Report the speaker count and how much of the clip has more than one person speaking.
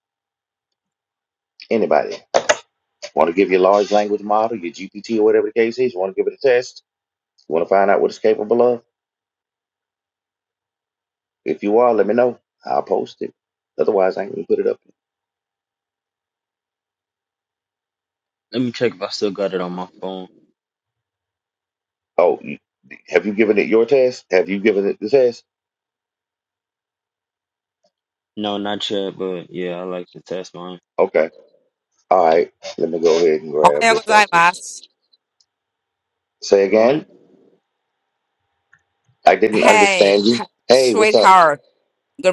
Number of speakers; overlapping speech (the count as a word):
three, about 5%